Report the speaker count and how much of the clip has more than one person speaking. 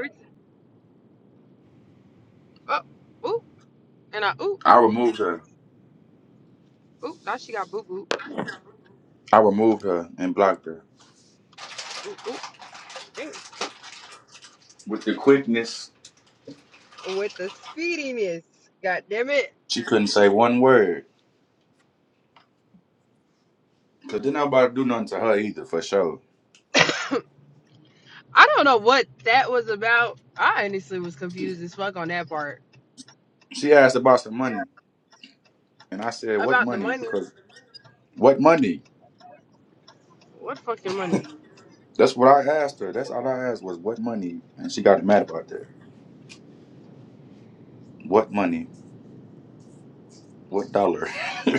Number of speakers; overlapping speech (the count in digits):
2, about 2%